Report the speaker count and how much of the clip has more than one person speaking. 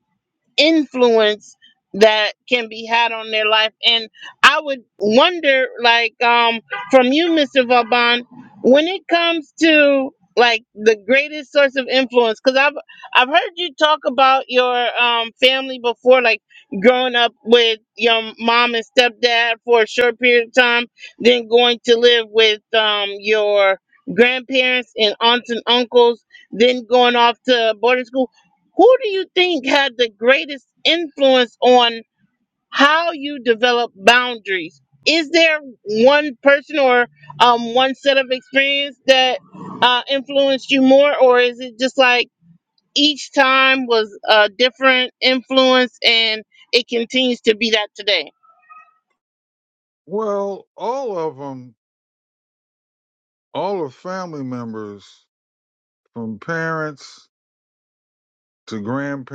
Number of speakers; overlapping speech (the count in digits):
2, no overlap